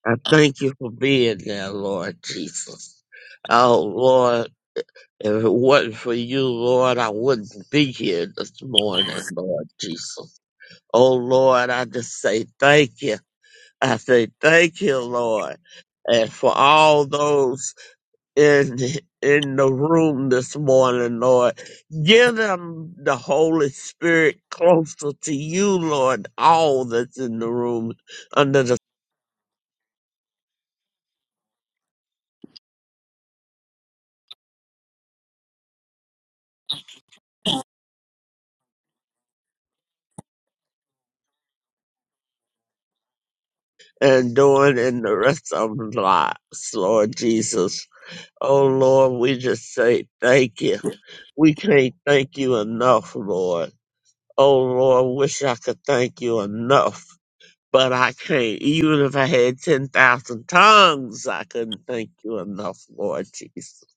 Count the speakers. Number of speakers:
one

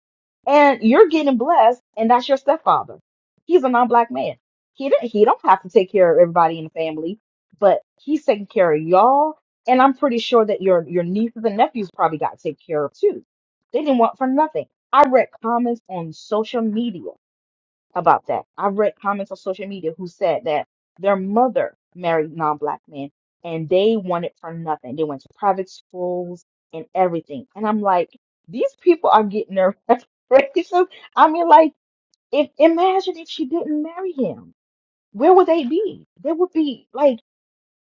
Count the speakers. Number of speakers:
one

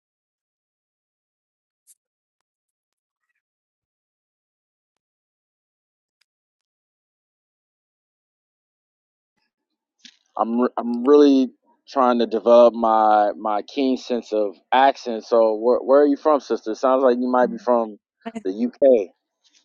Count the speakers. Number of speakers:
one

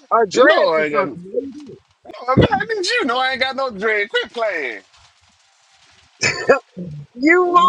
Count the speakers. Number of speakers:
two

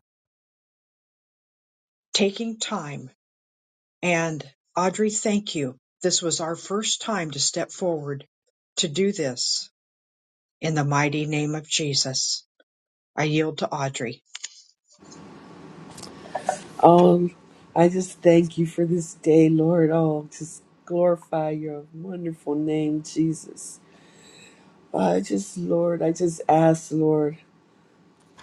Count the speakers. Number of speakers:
two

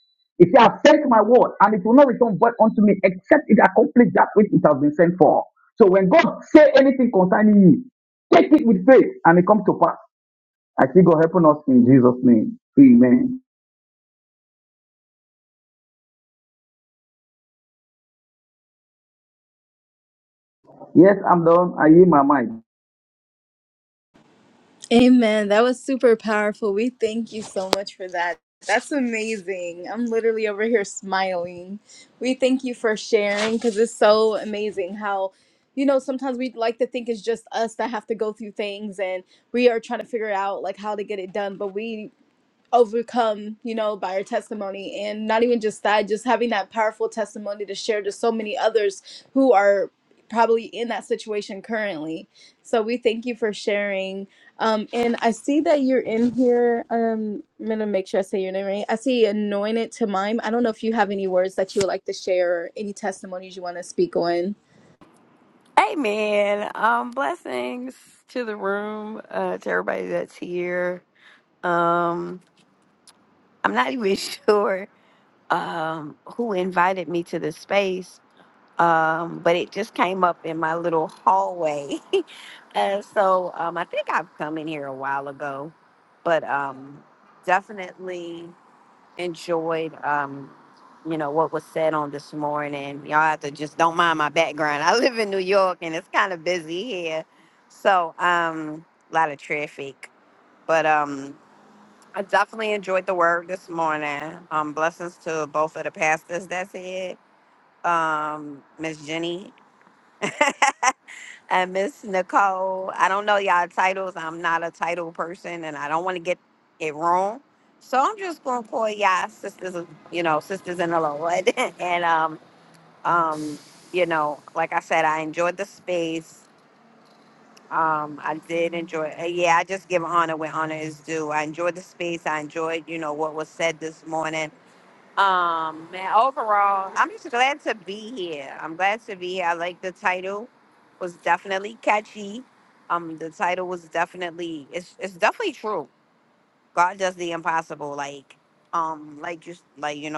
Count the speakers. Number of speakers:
three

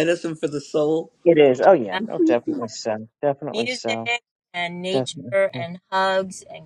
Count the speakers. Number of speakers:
three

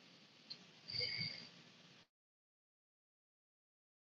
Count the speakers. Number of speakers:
zero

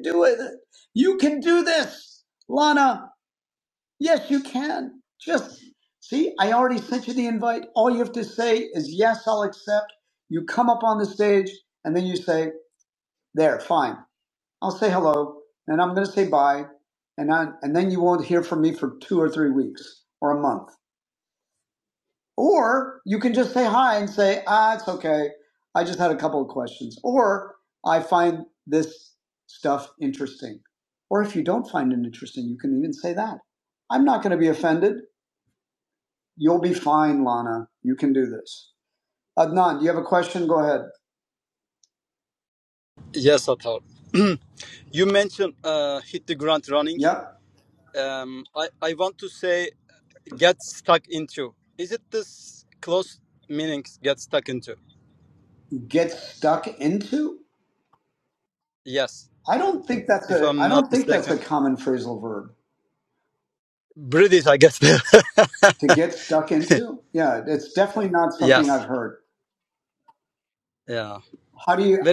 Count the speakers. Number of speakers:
two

